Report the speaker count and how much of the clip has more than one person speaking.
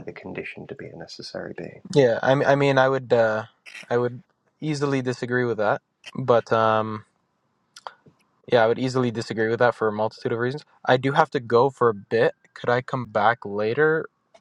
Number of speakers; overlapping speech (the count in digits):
2, no overlap